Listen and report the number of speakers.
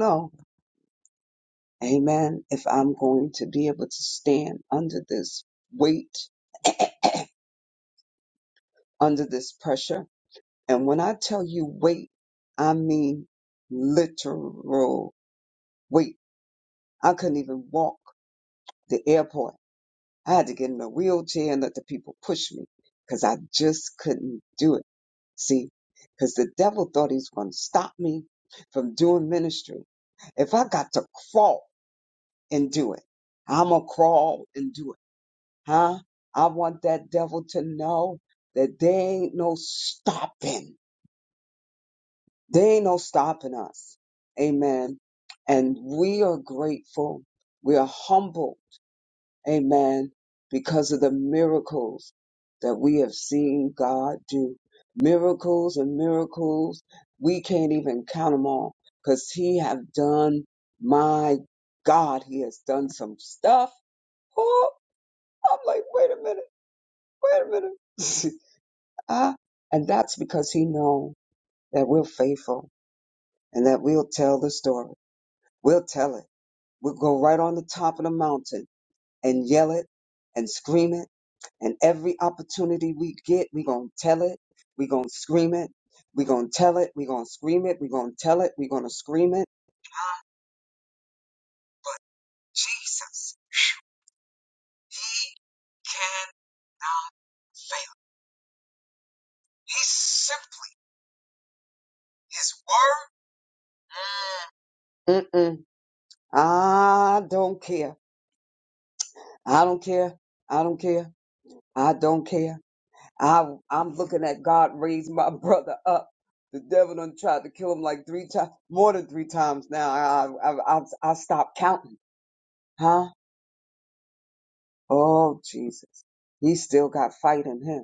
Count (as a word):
one